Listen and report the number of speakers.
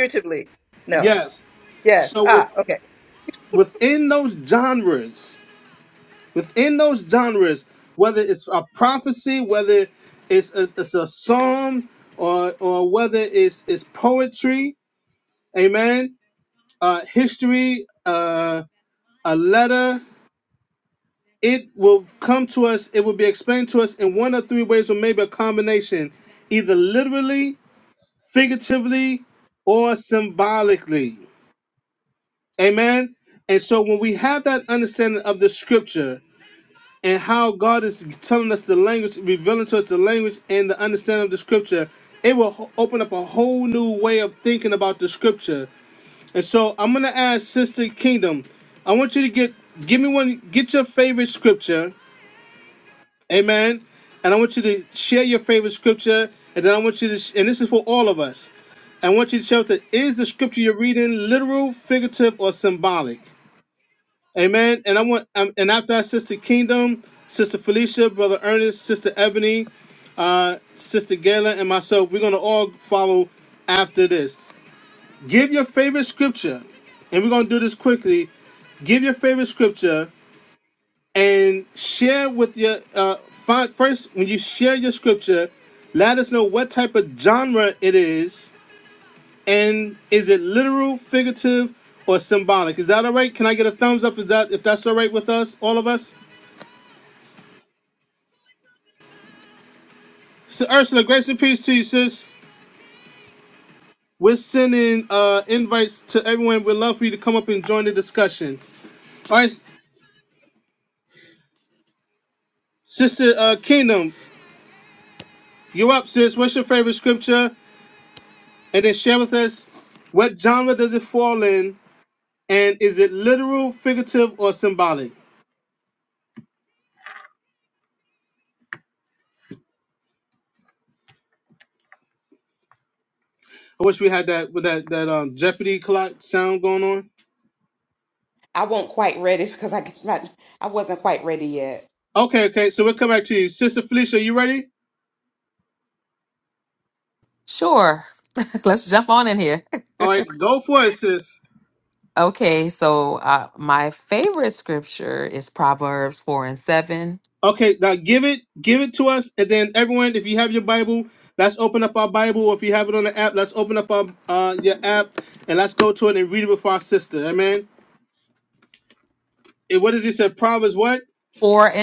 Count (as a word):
four